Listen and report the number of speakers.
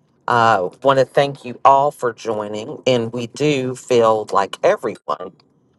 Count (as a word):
one